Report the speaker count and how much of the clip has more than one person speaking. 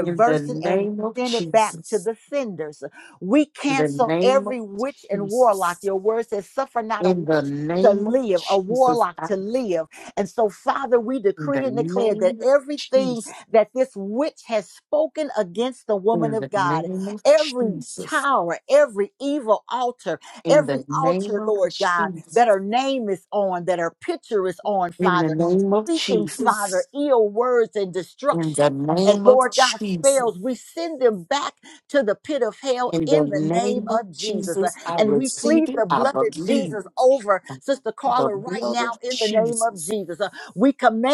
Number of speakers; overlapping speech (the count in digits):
2, about 45%